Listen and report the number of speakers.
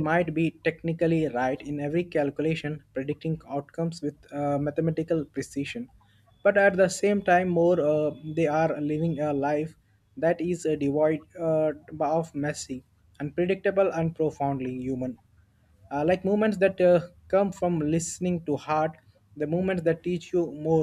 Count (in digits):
1